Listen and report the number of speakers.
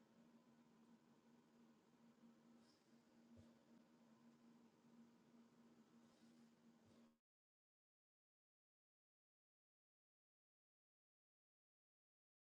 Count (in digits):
0